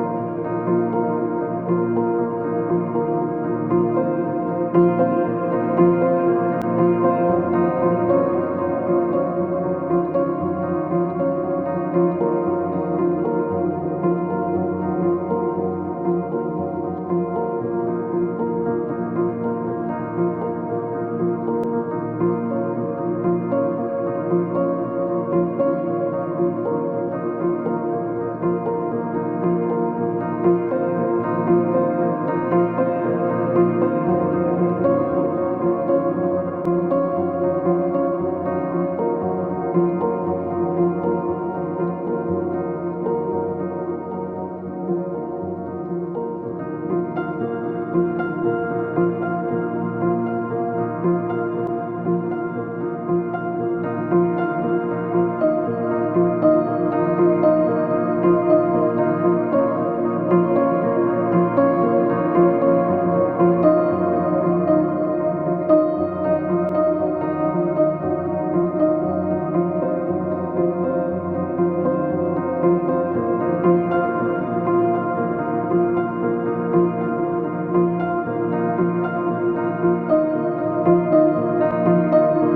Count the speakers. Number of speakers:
0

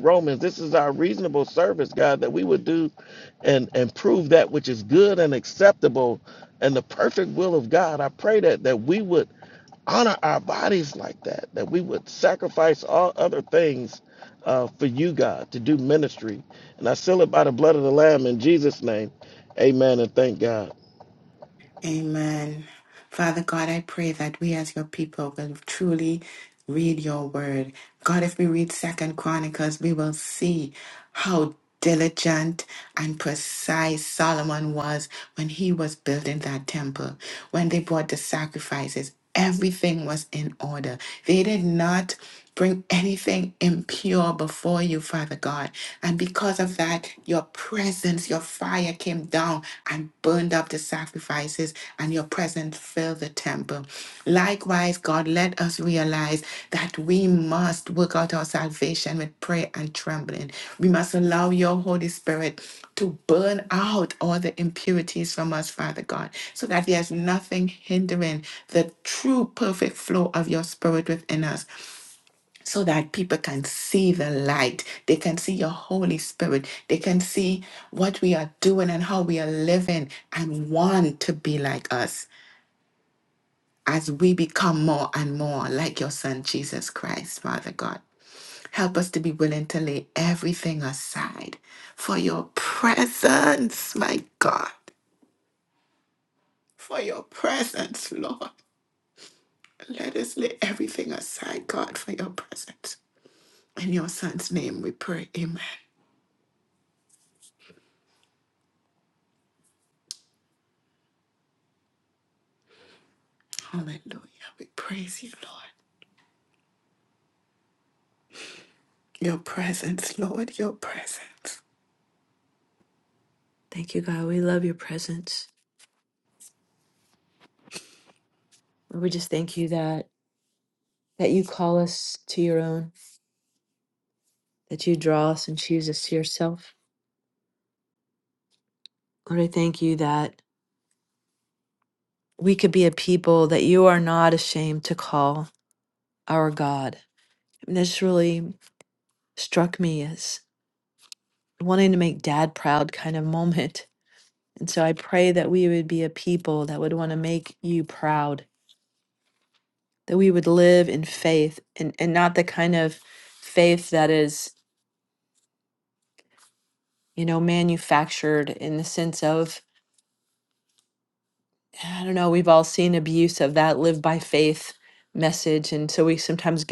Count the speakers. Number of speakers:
3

